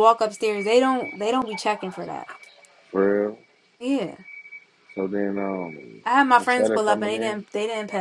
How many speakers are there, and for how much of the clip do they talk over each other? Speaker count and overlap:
2, about 12%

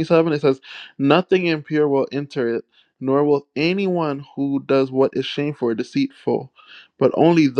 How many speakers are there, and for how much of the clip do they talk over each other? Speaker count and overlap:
1, no overlap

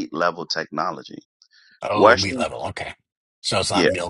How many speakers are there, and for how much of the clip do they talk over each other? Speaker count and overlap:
2, about 17%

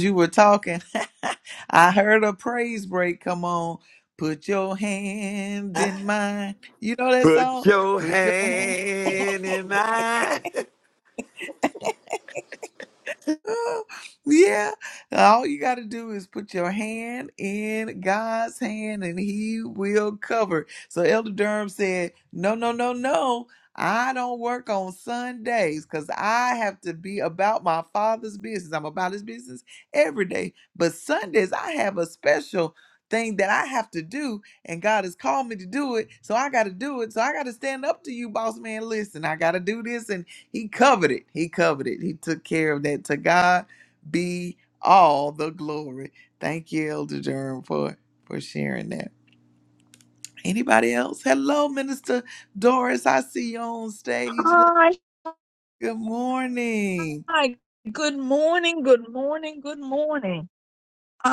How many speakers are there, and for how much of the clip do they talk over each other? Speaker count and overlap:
3, about 3%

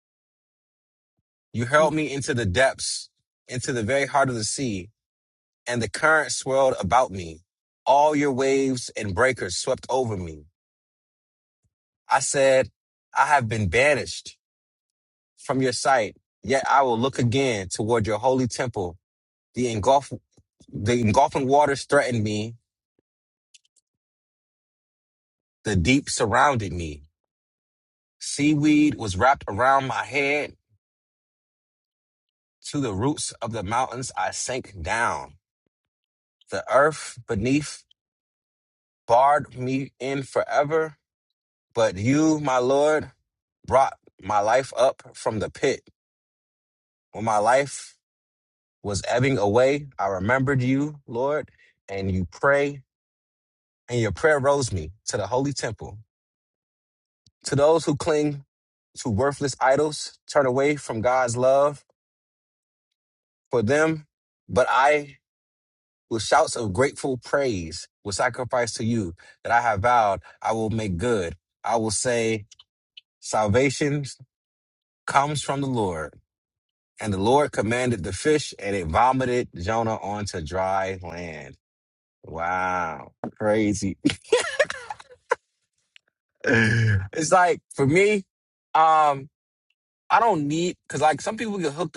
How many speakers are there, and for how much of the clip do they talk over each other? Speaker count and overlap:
1, no overlap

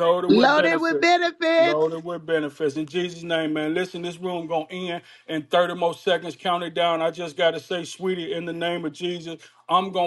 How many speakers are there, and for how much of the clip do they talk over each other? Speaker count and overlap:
2, about 10%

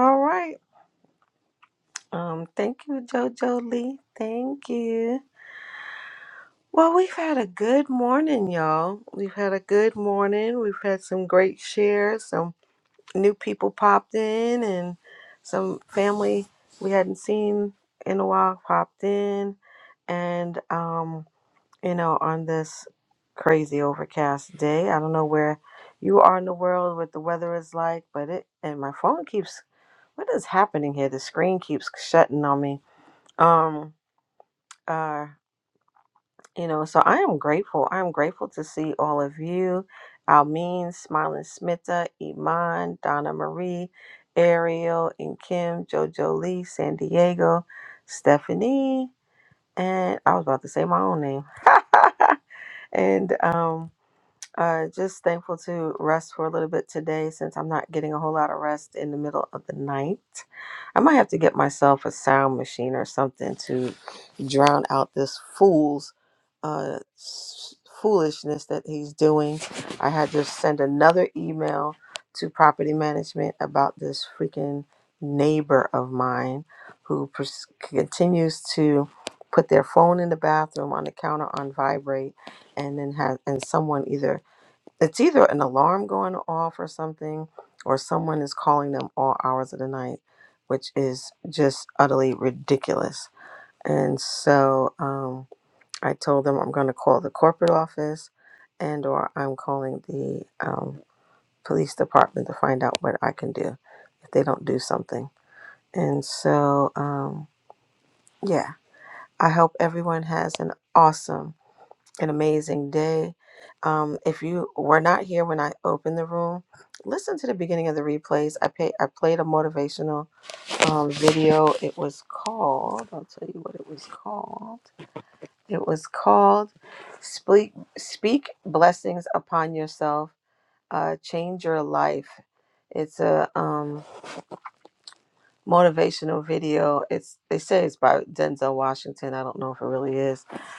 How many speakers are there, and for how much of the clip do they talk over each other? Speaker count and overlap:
1, no overlap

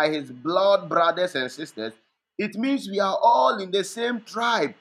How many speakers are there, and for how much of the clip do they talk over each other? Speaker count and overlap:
1, no overlap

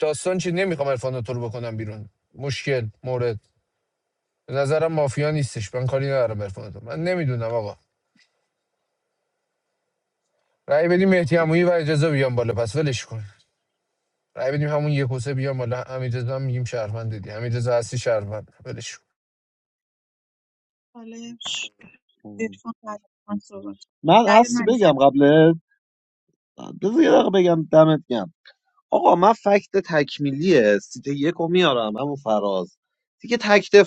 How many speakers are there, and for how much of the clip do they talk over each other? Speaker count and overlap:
3, about 2%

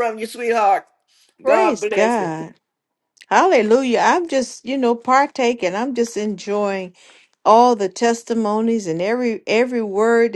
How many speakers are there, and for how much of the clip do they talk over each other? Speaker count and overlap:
2, about 8%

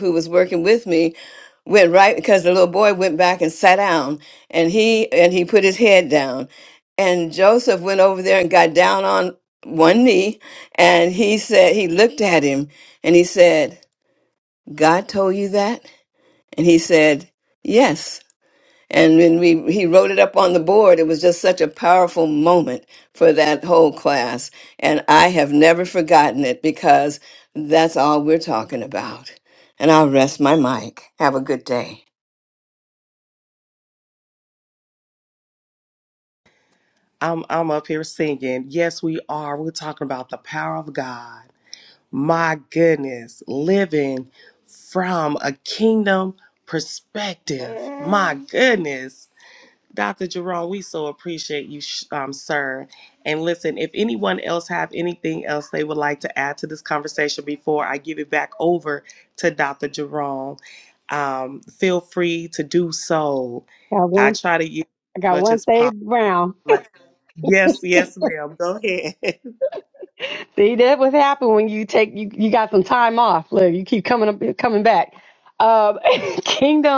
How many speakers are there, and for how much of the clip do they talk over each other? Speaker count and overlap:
3, about 1%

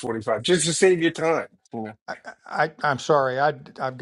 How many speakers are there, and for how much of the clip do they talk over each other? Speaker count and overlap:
2, no overlap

